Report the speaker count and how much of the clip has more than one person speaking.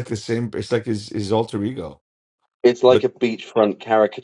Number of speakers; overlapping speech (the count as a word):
two, about 3%